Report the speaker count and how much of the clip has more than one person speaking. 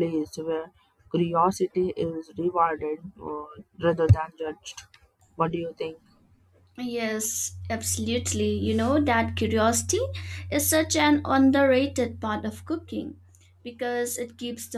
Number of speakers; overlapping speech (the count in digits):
2, no overlap